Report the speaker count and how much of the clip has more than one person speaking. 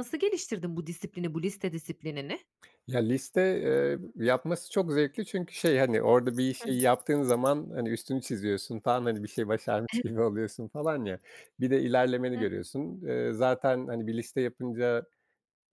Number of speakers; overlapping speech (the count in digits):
2, about 2%